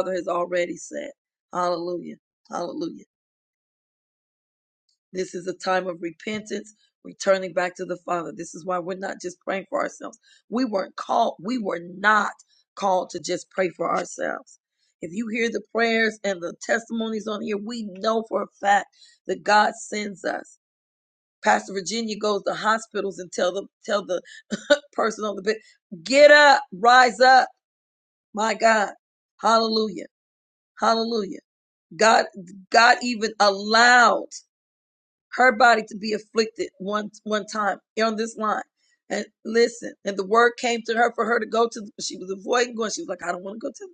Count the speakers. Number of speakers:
one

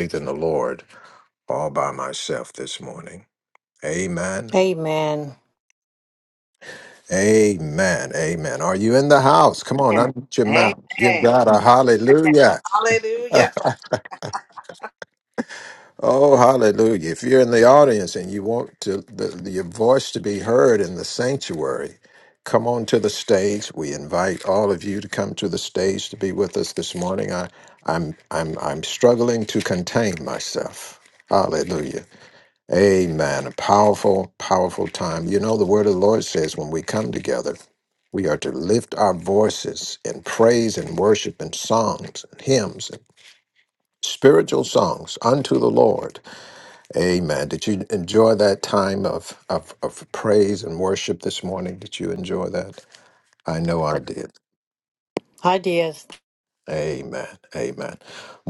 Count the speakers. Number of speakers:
three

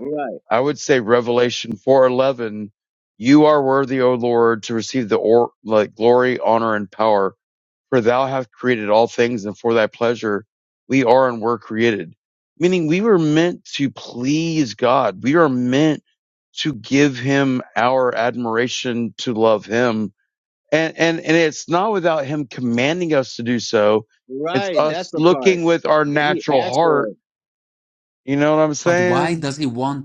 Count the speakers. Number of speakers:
three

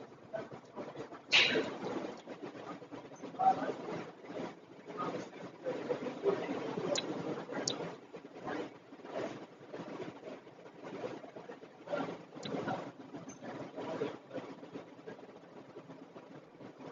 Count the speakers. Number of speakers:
zero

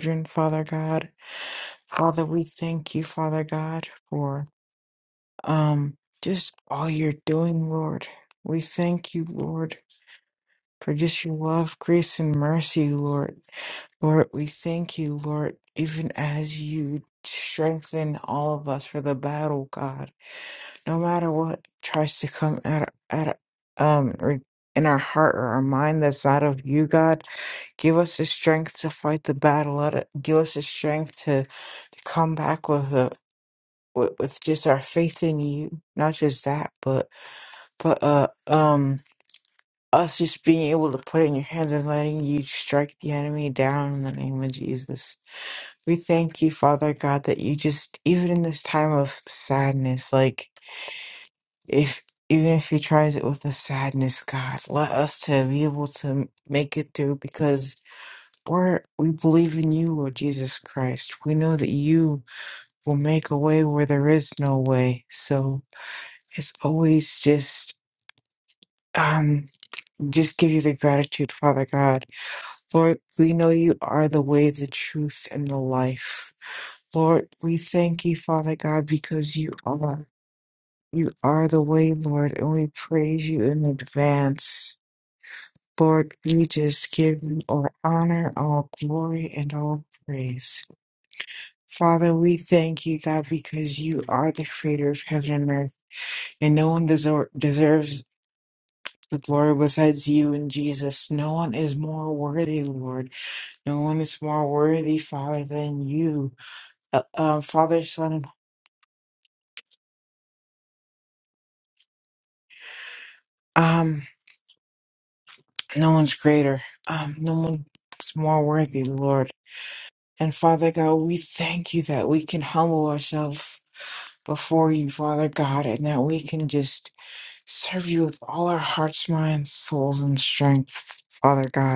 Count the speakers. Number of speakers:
one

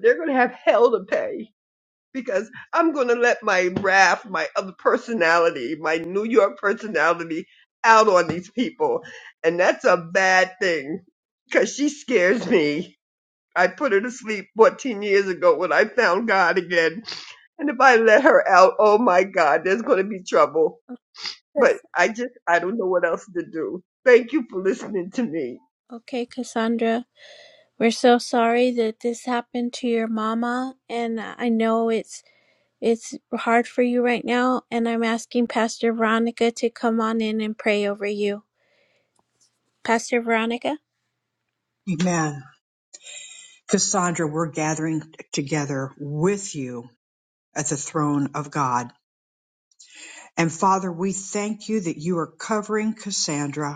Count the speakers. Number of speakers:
three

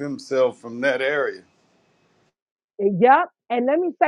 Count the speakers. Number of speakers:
two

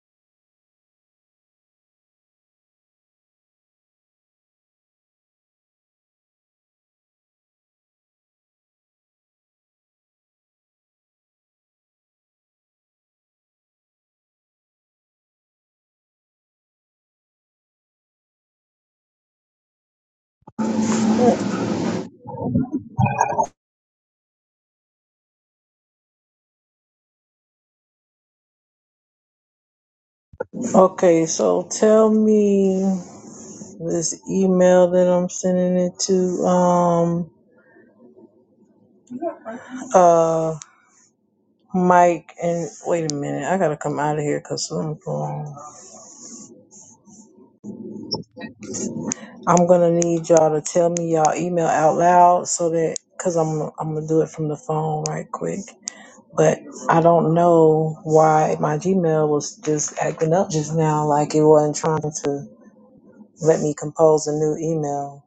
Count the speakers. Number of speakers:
one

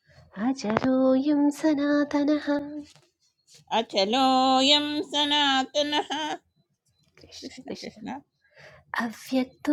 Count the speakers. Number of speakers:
two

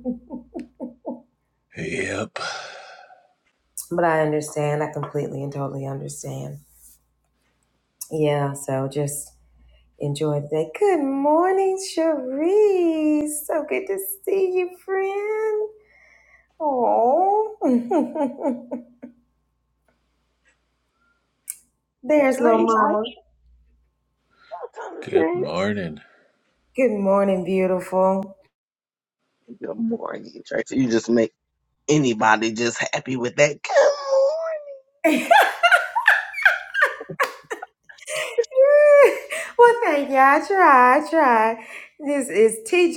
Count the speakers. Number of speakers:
three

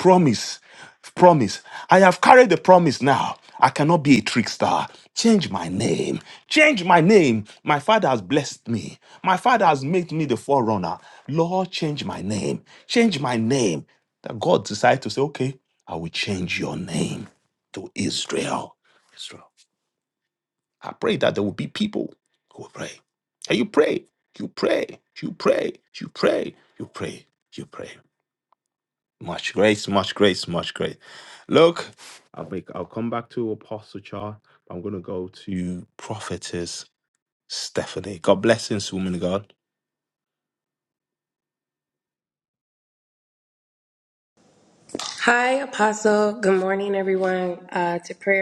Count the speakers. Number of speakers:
two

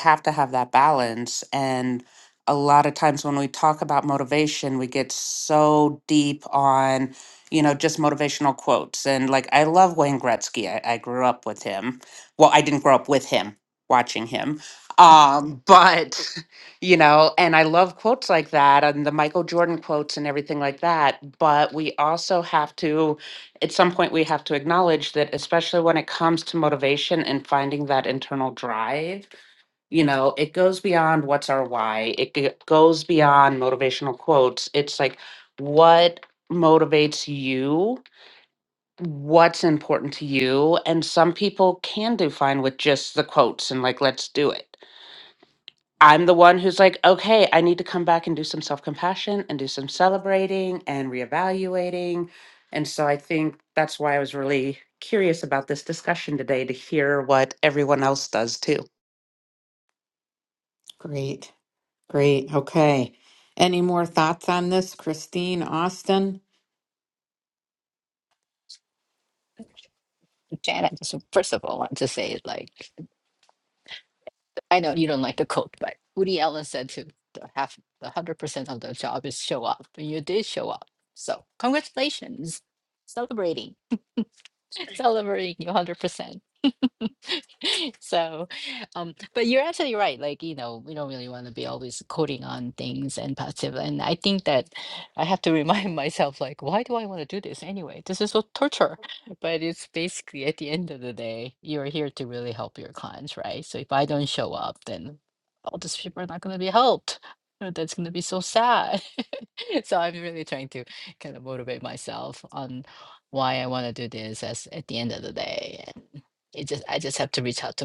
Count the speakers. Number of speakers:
three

